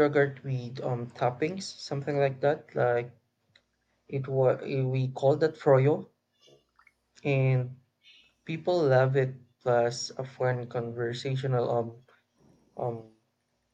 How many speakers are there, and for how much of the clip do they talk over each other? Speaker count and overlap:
1, no overlap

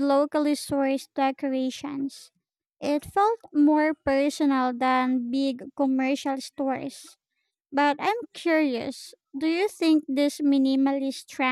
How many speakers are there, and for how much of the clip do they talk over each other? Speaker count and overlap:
1, no overlap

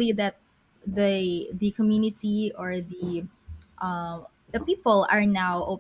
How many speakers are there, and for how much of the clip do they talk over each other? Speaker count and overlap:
1, no overlap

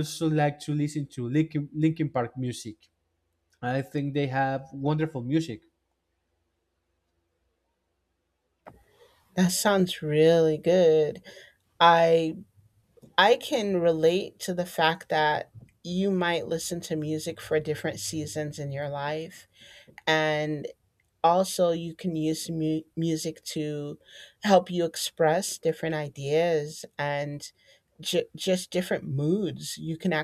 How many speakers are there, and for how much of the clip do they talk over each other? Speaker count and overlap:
2, no overlap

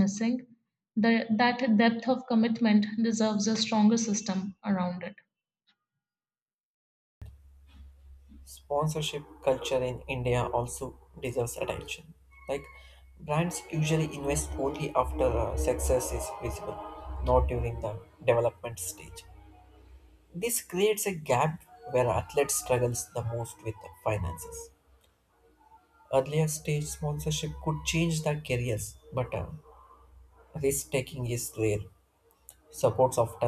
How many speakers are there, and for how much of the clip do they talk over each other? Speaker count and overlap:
2, no overlap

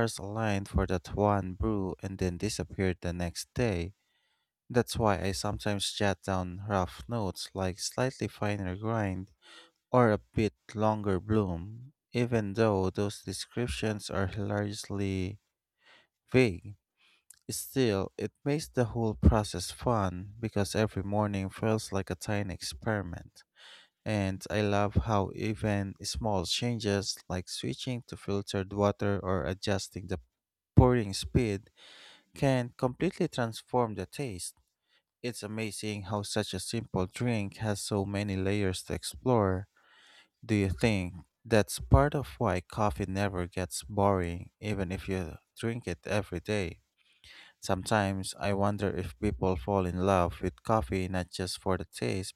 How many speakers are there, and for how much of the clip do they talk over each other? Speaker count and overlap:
1, no overlap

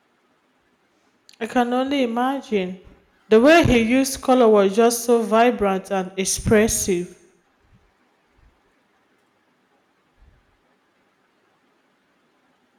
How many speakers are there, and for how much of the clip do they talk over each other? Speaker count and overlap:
1, no overlap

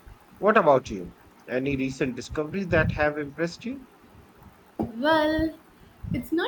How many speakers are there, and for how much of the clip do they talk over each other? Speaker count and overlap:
2, no overlap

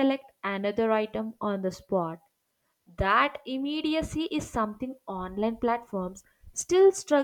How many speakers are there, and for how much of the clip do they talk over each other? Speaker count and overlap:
1, no overlap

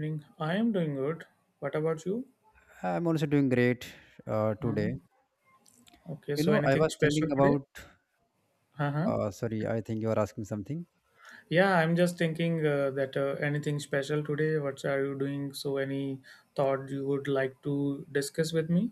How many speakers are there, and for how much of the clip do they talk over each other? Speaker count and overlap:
2, about 8%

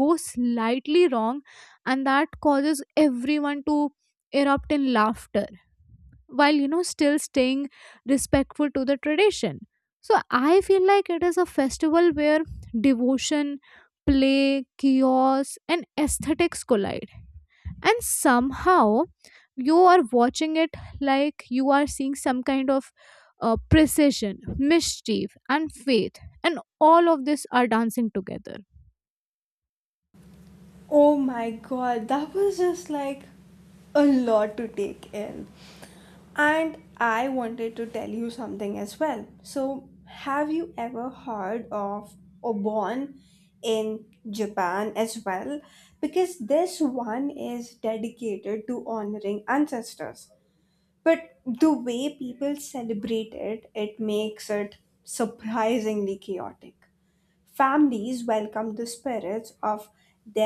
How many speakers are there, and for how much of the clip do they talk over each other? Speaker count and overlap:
2, no overlap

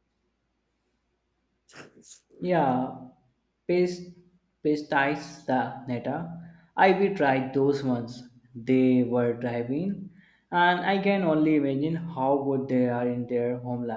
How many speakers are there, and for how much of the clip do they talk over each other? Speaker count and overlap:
1, no overlap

